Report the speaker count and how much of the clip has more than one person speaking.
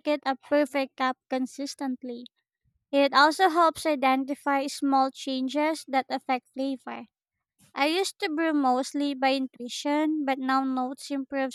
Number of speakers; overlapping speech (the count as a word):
one, no overlap